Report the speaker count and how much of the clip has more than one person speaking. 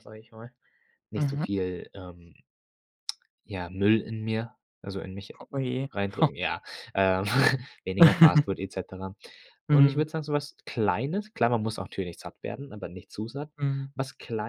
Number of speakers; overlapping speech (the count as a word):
two, about 7%